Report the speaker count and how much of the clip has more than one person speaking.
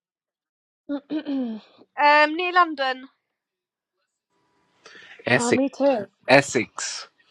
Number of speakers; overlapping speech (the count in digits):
3, about 2%